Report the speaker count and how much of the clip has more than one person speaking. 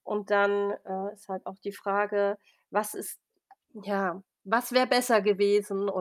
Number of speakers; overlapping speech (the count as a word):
one, no overlap